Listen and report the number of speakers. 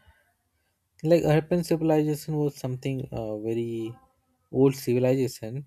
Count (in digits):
1